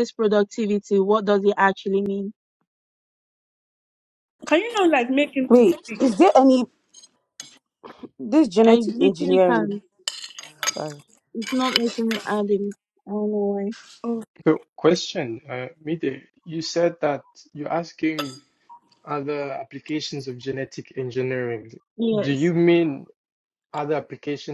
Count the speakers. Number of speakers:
four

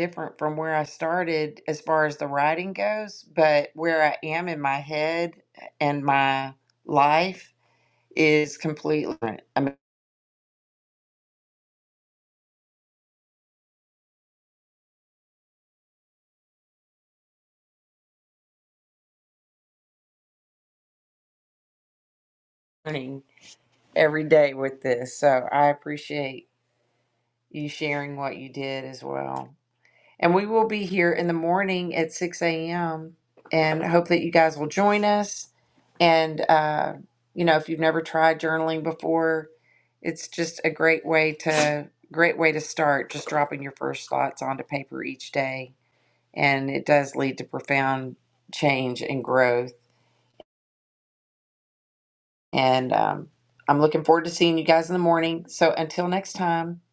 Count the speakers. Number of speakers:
one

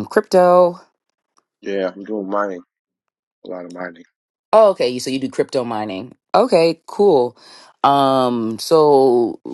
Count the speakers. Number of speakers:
two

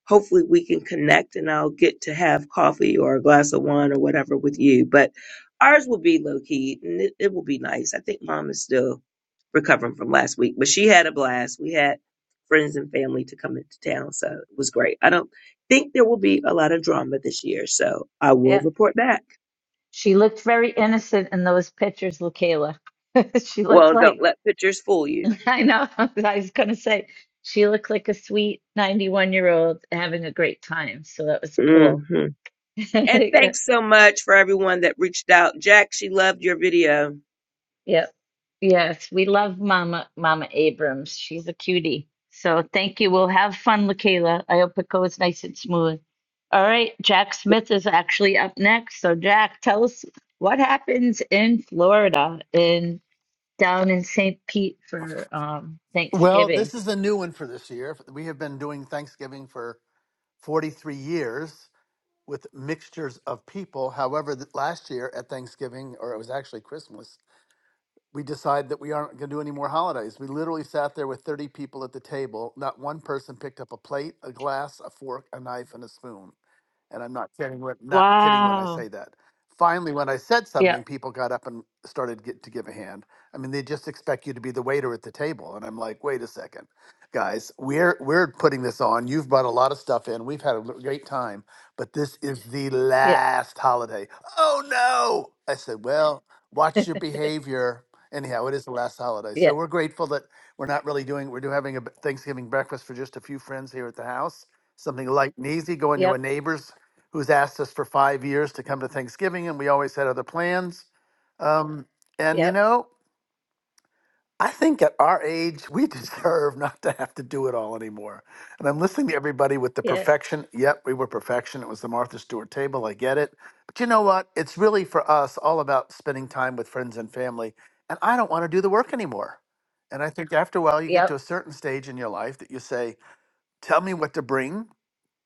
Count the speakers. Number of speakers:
three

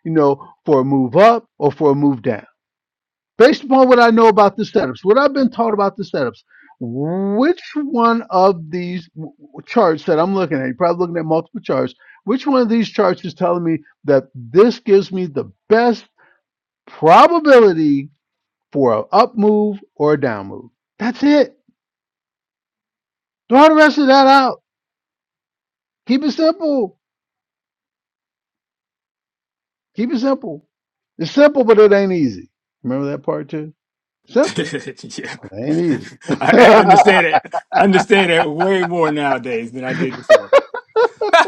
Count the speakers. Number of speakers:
two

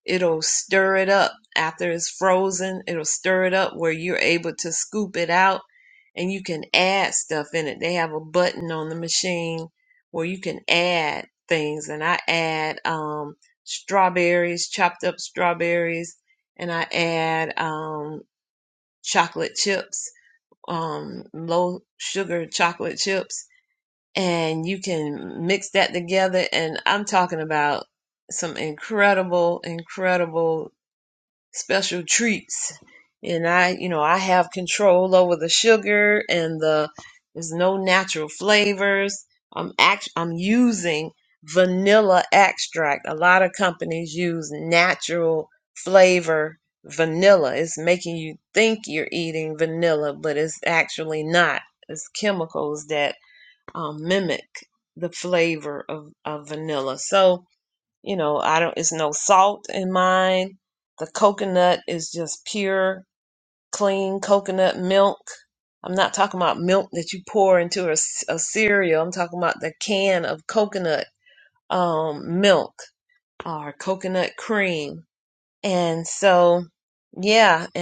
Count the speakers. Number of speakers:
one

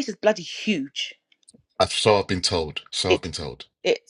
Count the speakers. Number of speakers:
two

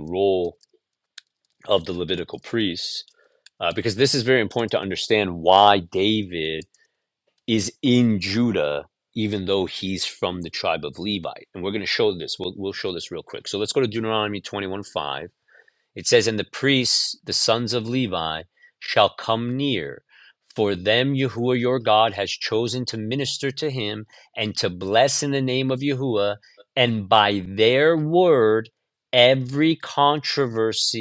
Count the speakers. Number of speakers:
one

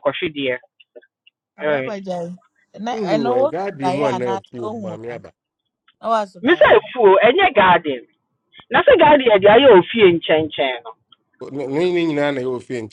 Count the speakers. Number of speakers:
three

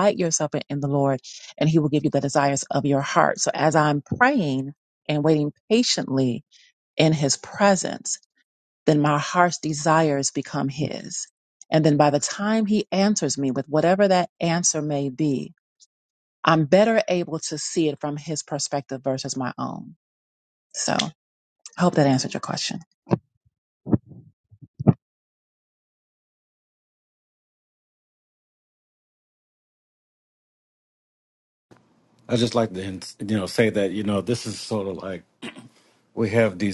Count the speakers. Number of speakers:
two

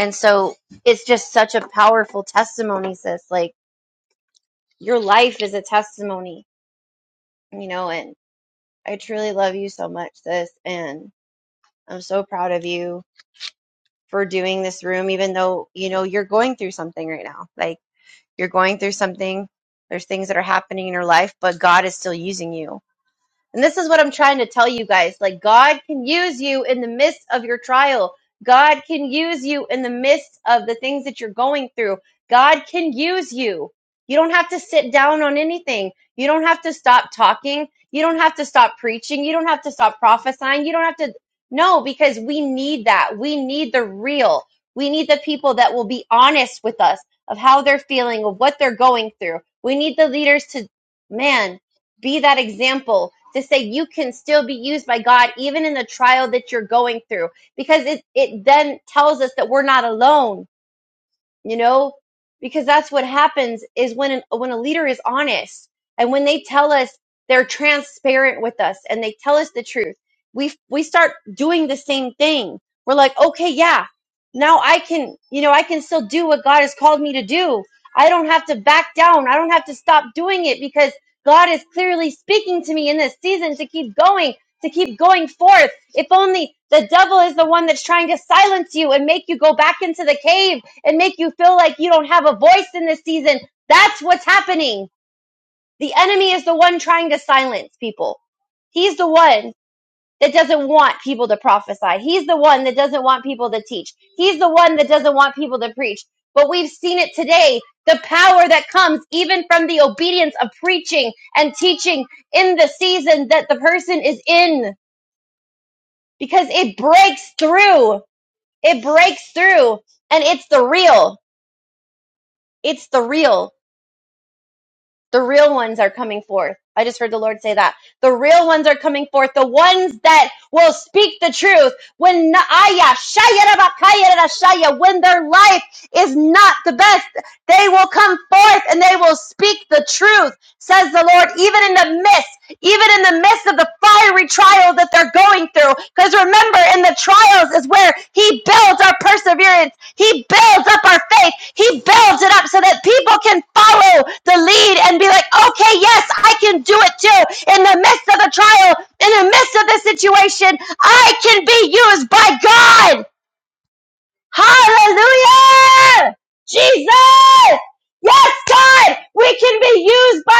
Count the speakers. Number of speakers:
one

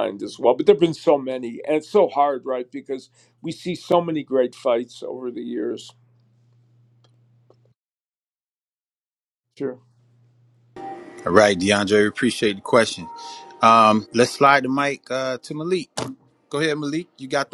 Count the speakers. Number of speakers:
two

